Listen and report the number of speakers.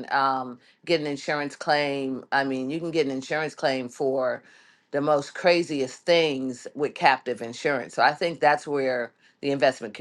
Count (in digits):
1